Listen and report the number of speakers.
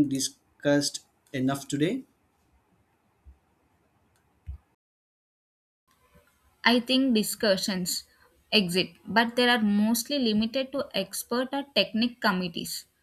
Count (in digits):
2